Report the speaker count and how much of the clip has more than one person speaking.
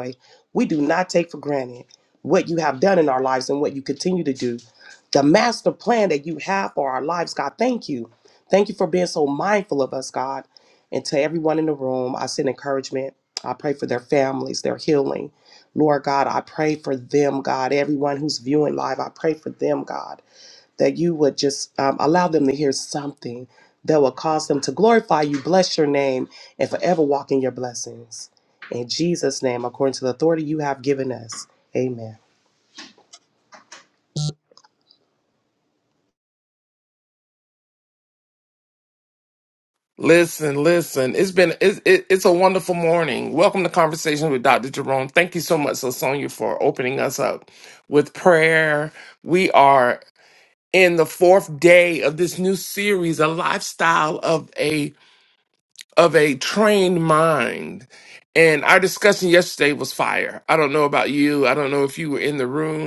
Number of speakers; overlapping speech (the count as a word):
two, no overlap